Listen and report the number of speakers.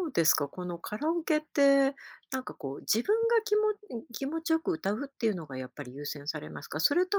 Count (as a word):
one